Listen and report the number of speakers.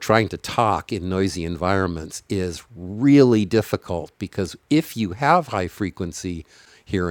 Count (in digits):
1